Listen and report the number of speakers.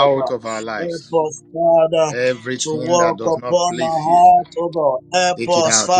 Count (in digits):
2